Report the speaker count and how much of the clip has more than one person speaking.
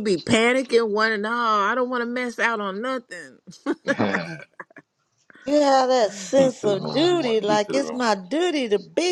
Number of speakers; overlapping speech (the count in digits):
3, about 15%